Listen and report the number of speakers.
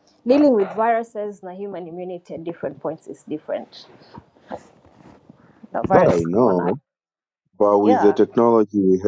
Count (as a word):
two